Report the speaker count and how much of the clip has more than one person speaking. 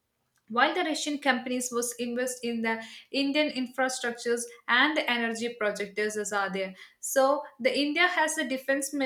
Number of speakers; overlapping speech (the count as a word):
one, no overlap